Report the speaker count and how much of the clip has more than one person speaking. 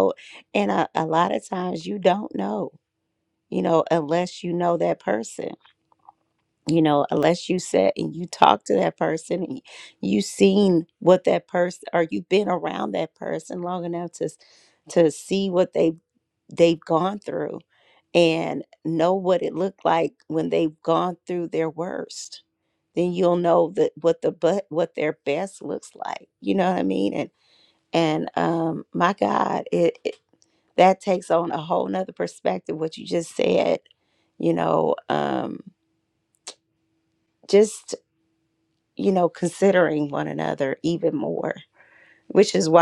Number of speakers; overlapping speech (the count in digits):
1, no overlap